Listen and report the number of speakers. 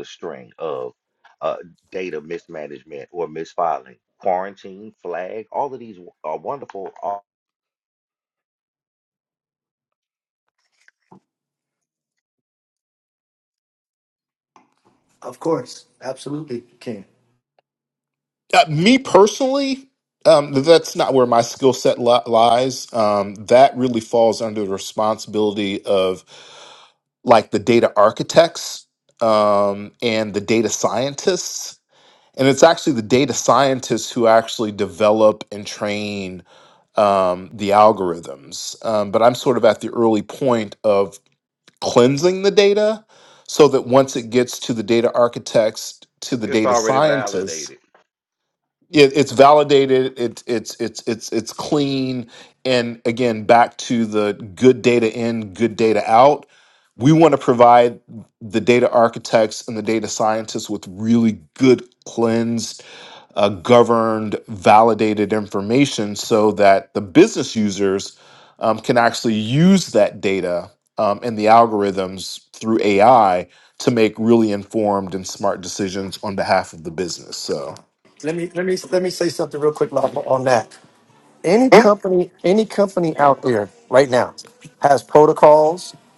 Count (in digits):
3